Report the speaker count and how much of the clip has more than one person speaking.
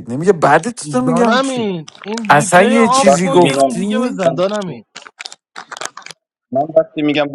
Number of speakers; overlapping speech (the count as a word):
three, about 36%